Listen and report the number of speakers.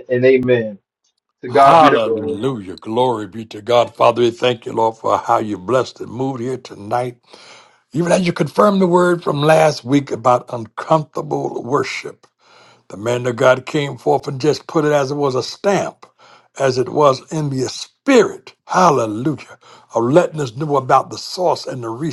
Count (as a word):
two